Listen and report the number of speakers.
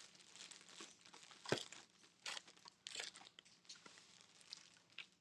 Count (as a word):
zero